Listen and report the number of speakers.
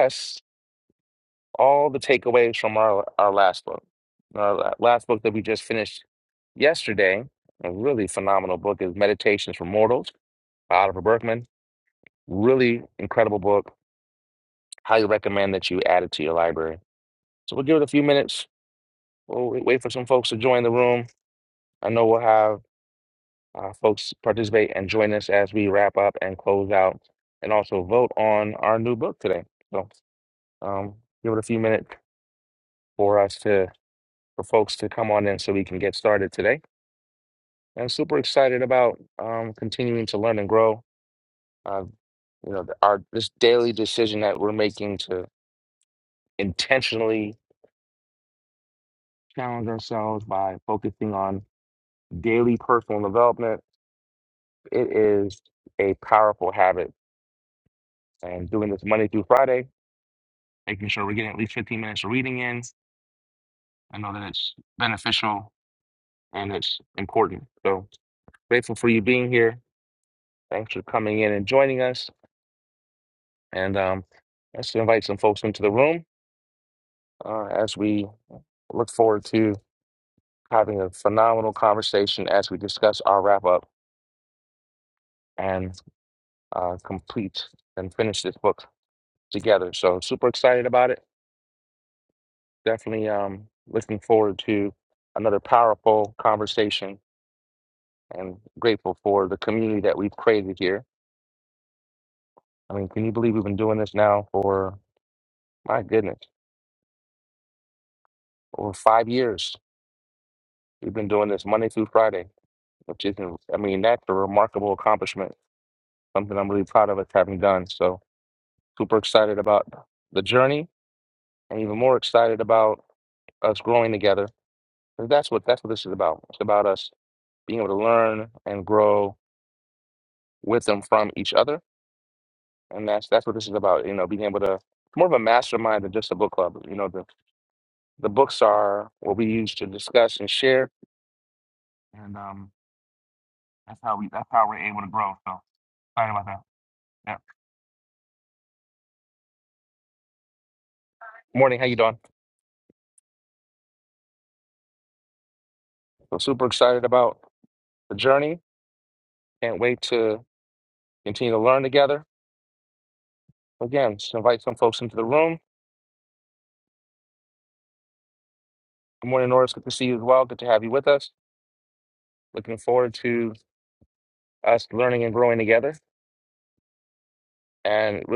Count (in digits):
1